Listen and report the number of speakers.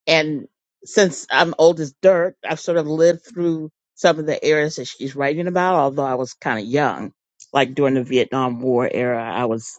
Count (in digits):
1